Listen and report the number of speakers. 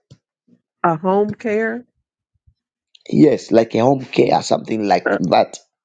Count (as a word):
two